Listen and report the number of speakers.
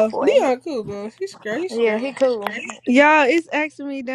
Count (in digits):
3